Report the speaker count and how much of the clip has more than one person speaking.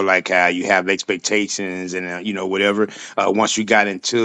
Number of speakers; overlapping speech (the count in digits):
1, no overlap